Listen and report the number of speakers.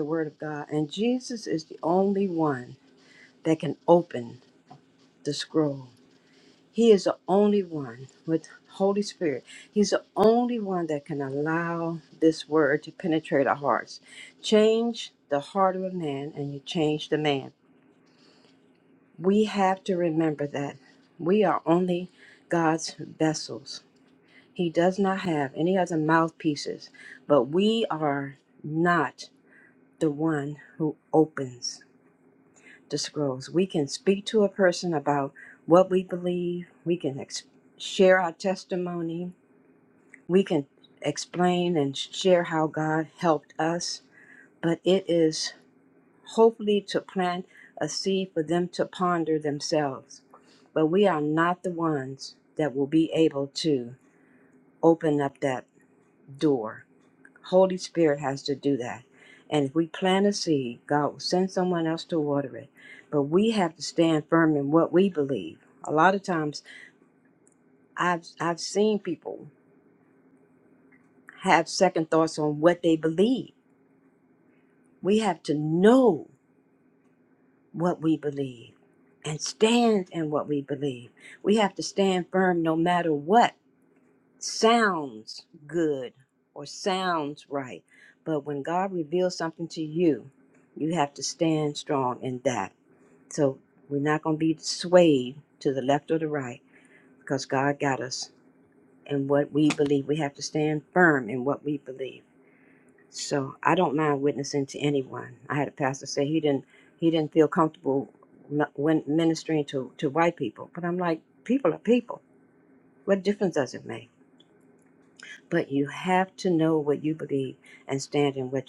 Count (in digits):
1